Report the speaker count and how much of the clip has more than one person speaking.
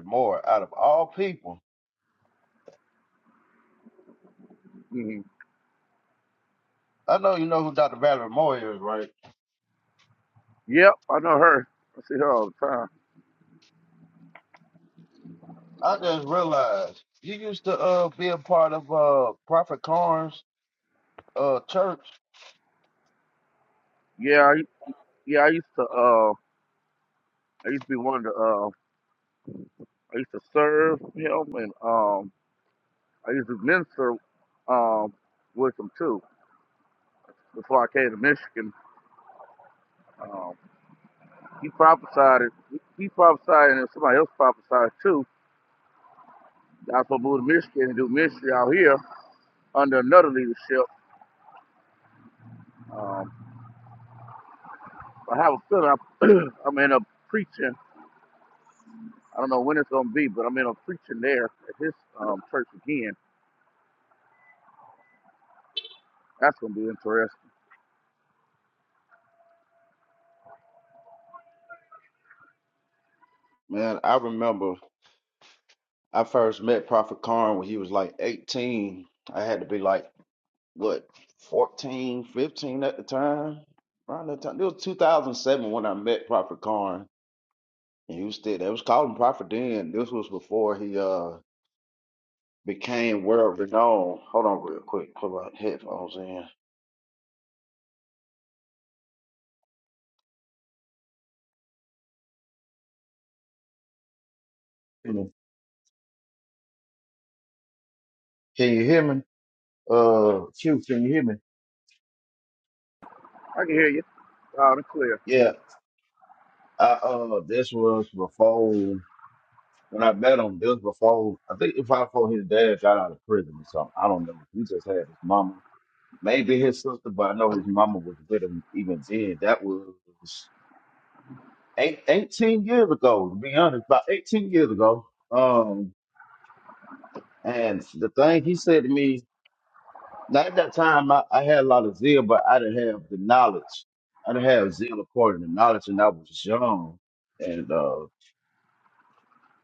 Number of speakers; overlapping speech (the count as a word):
two, no overlap